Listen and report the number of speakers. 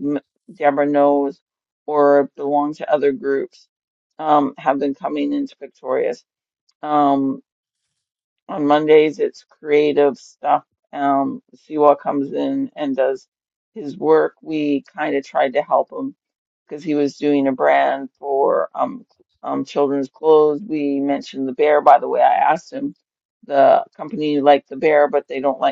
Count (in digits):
1